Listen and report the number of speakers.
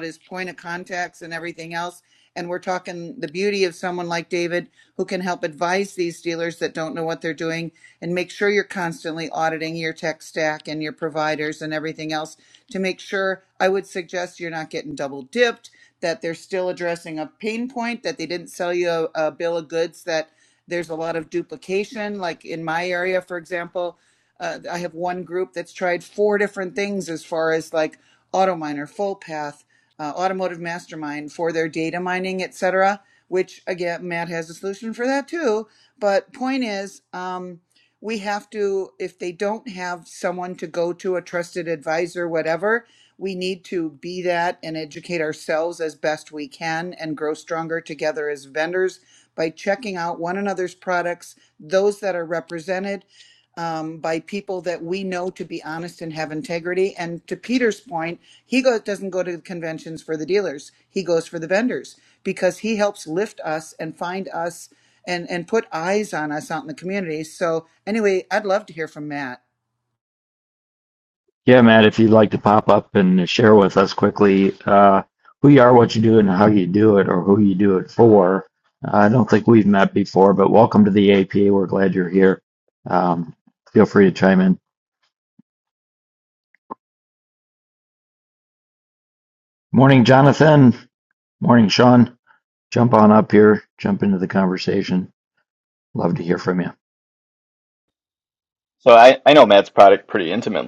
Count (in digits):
3